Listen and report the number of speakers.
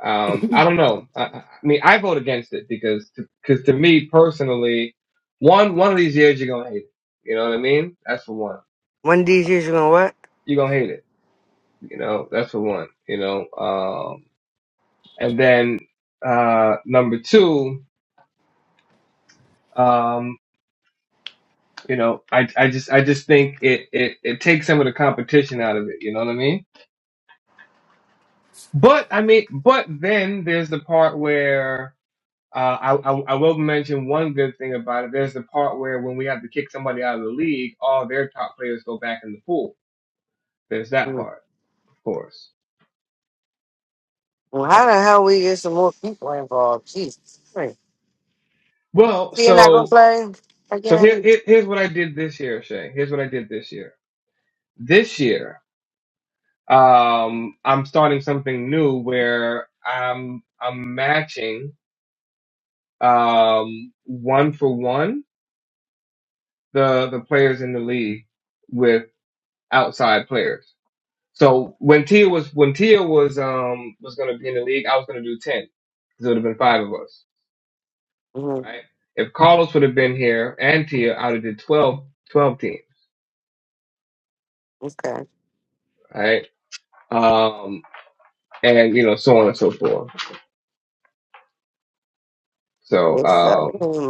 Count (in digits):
2